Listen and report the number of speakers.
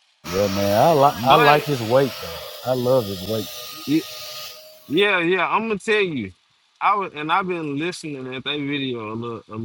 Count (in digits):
2